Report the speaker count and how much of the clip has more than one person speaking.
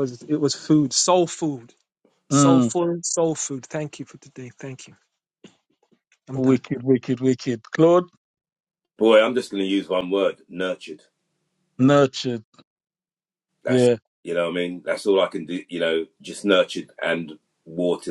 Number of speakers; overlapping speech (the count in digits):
3, about 3%